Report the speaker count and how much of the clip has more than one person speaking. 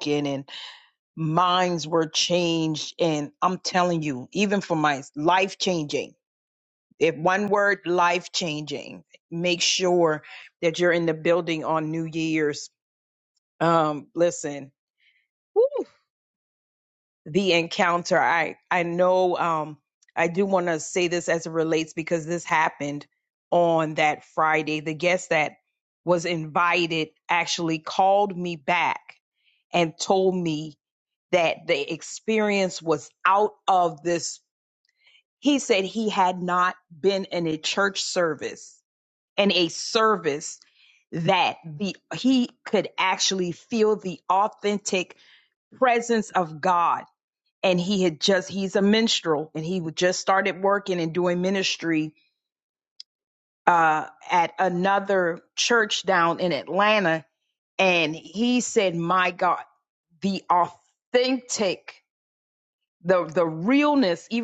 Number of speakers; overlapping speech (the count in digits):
1, no overlap